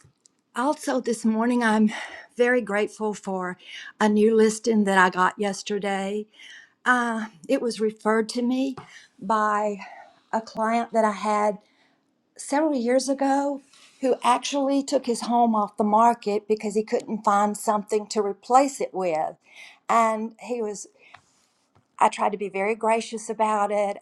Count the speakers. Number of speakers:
one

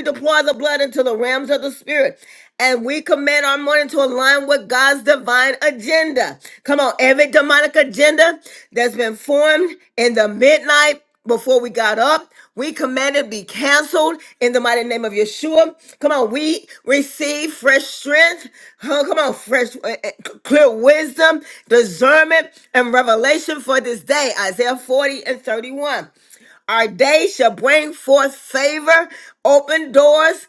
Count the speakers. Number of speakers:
one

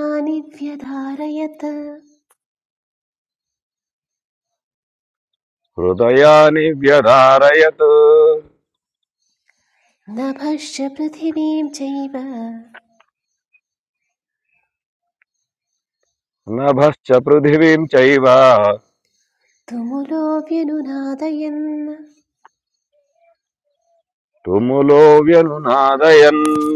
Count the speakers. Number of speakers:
two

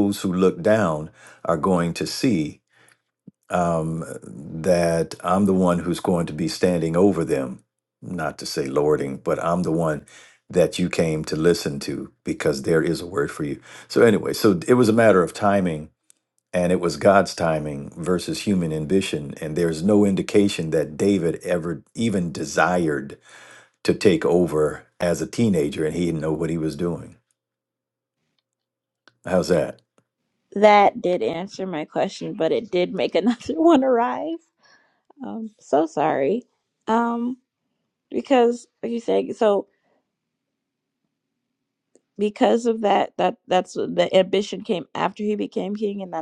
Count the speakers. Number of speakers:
two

